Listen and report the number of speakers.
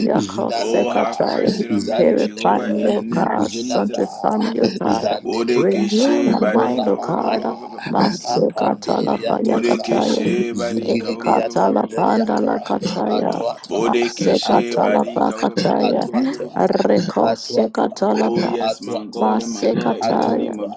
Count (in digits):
3